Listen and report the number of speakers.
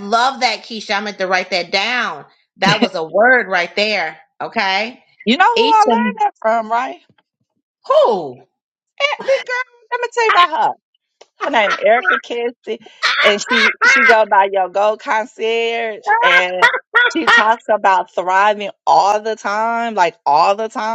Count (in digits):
2